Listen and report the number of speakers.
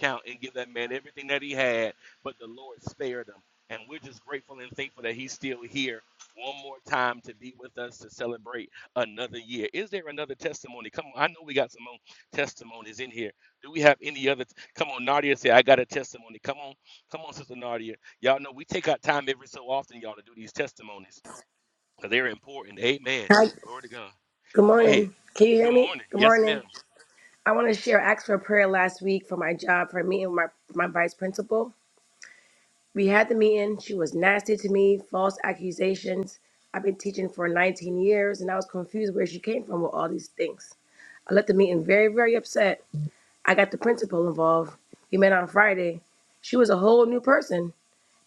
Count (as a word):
two